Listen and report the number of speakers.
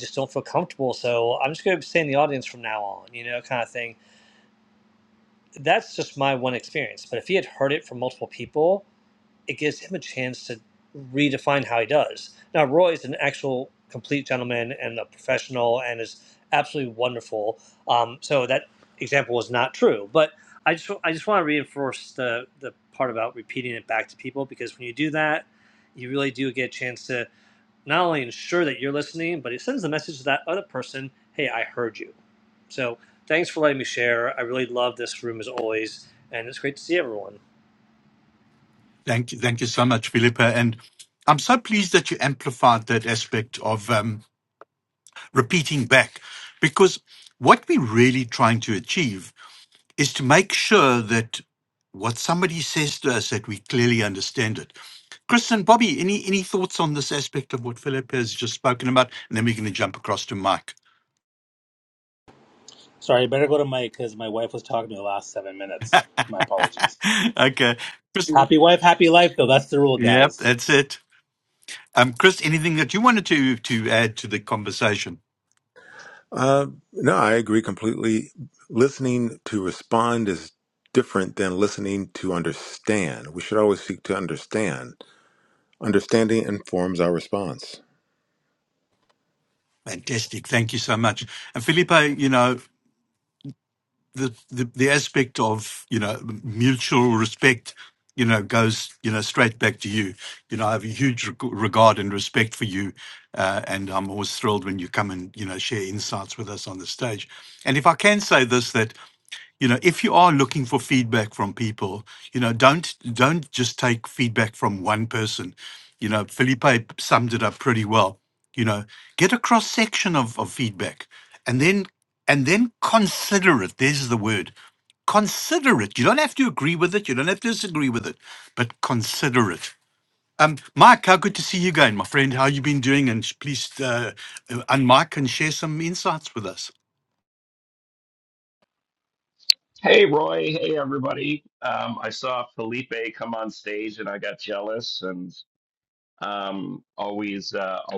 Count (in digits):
5